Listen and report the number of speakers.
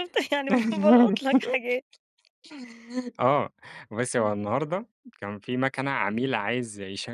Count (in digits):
2